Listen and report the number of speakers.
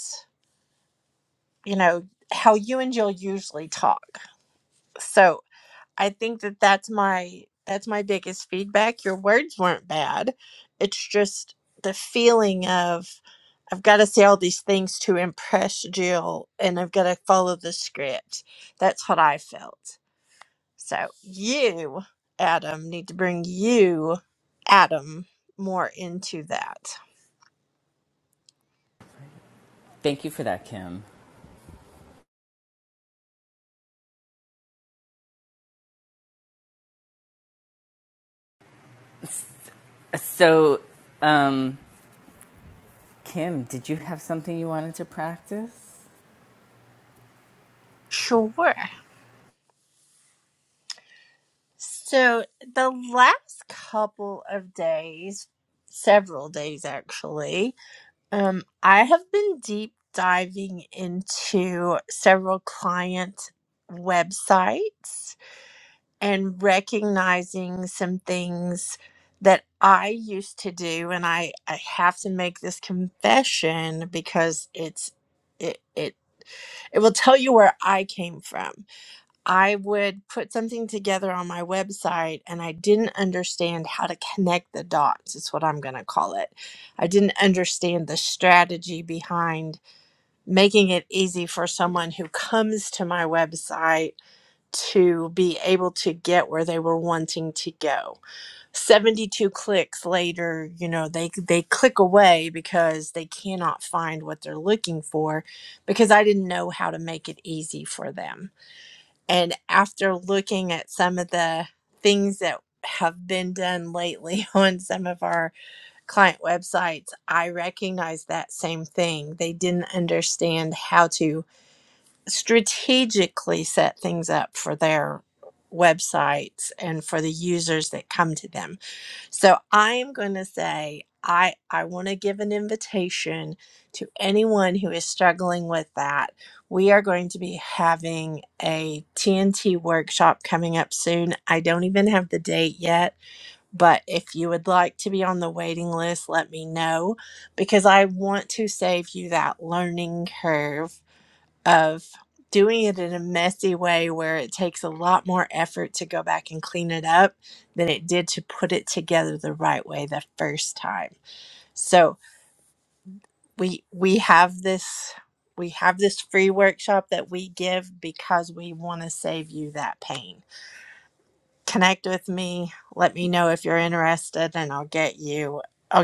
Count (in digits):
2